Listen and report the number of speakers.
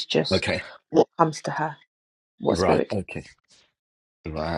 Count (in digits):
2